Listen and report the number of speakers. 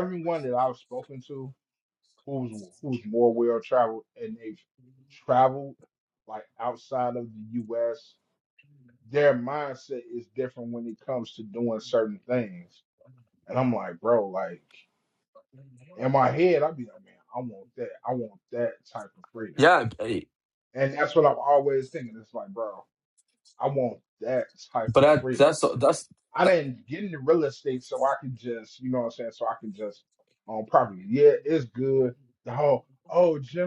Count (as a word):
two